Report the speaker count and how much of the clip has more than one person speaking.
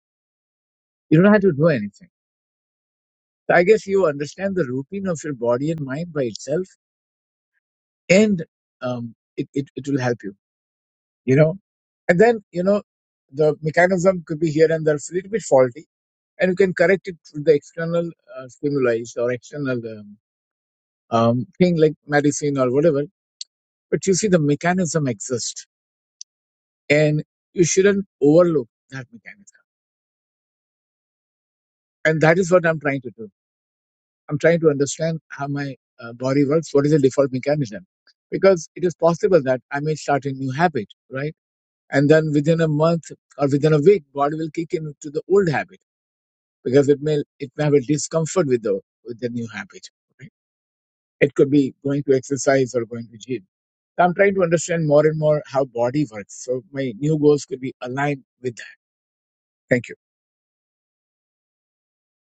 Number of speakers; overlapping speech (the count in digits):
1, no overlap